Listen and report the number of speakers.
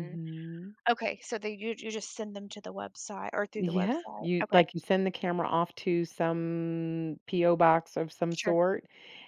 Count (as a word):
two